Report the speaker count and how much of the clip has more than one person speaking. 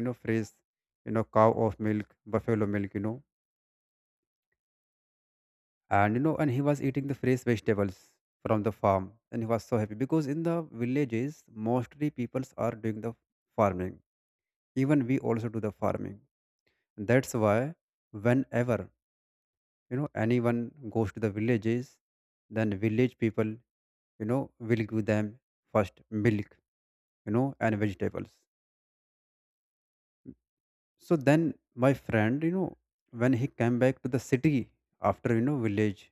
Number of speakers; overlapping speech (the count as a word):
one, no overlap